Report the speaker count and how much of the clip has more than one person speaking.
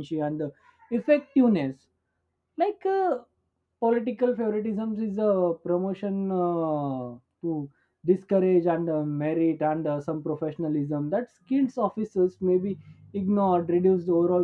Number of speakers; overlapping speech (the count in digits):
1, no overlap